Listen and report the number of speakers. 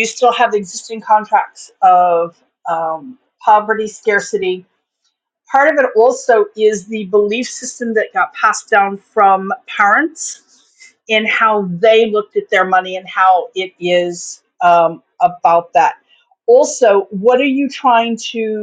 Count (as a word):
one